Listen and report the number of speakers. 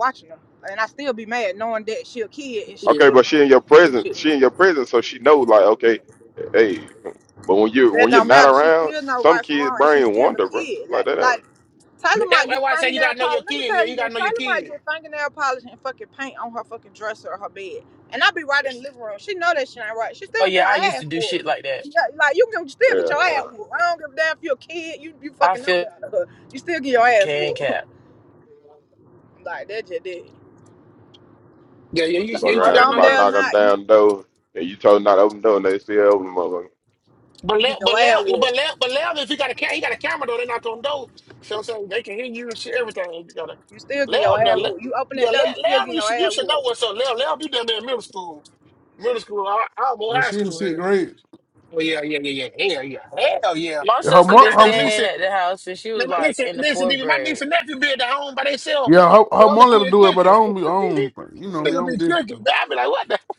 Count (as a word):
five